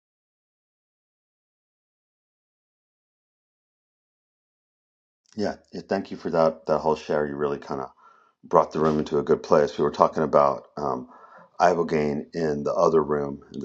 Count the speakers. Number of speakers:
1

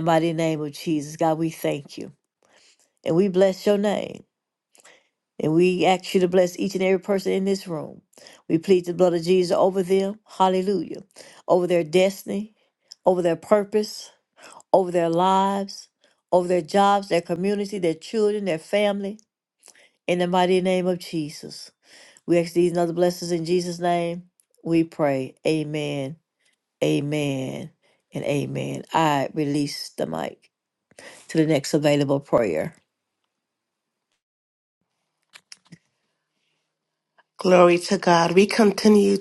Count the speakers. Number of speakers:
2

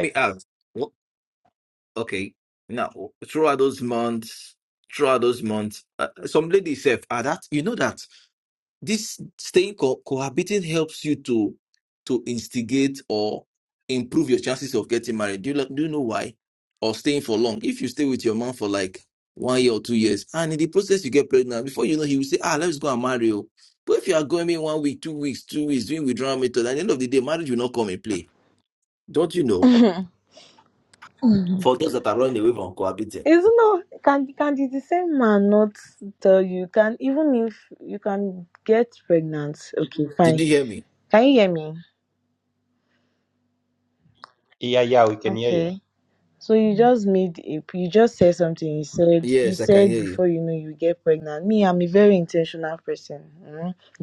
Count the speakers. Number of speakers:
3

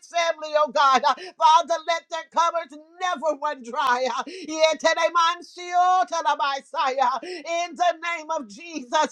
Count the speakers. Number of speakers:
1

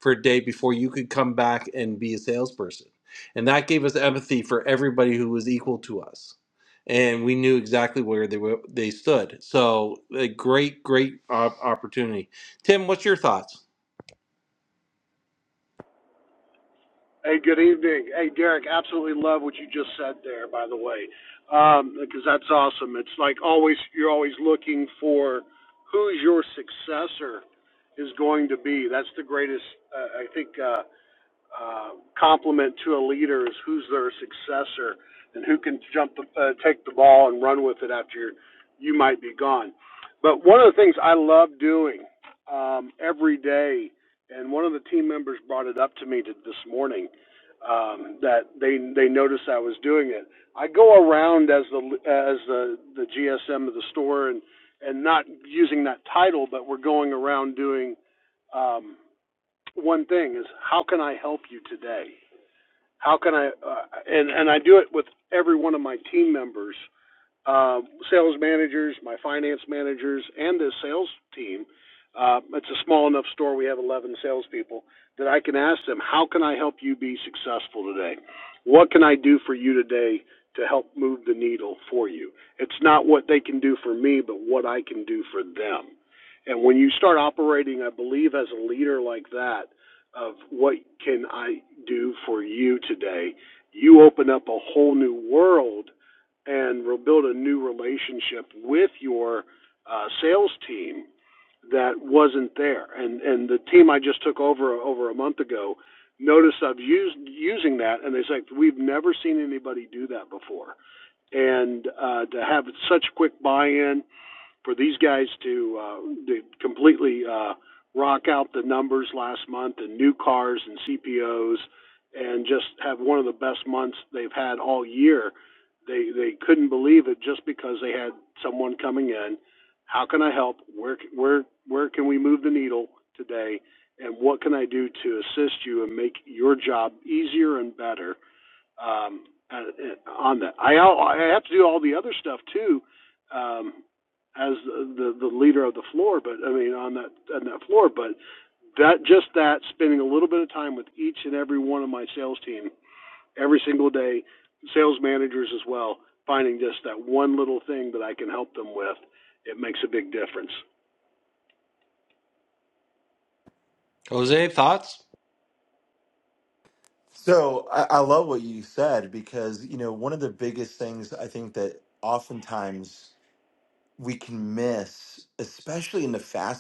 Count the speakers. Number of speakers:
3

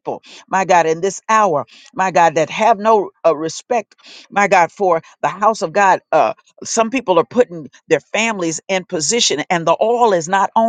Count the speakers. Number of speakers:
1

